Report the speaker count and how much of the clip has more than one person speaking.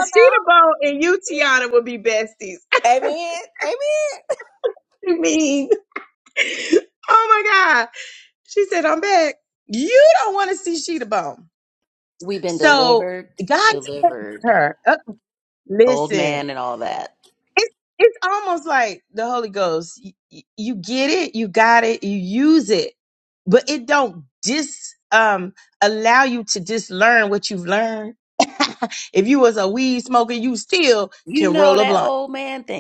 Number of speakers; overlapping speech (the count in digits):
3, about 9%